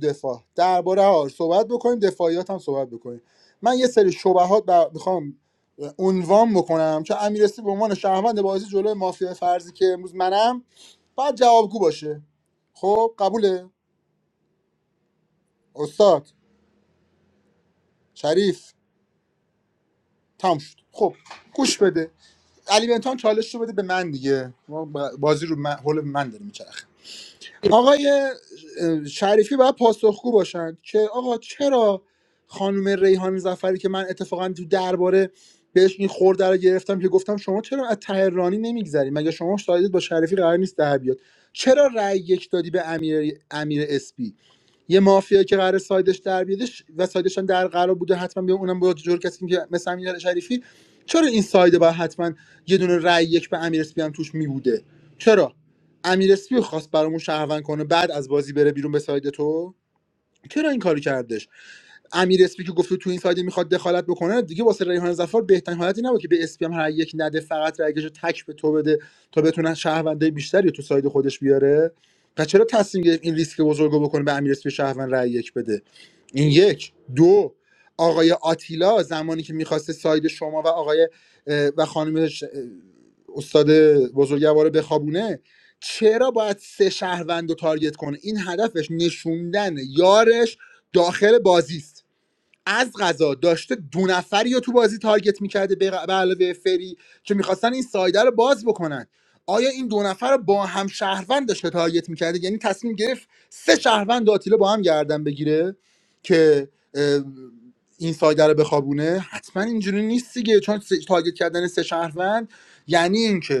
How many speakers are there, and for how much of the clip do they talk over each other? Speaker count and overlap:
1, no overlap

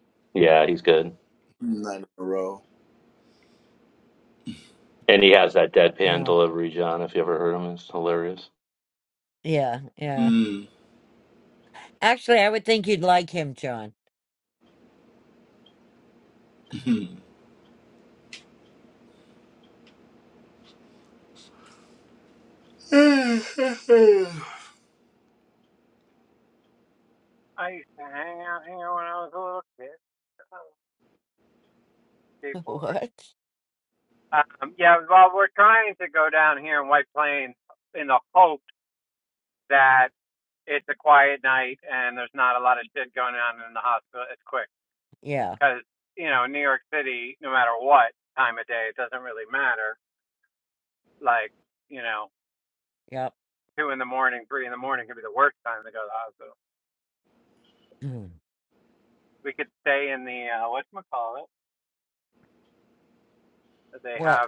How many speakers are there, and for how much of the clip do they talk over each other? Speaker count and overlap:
4, about 1%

